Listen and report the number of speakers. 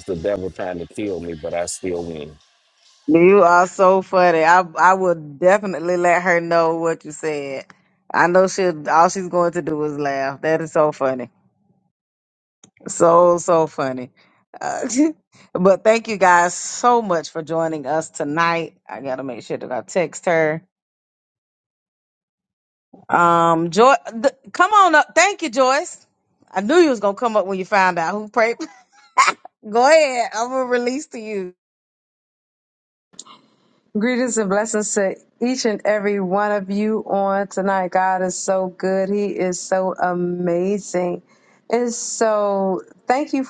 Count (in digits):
3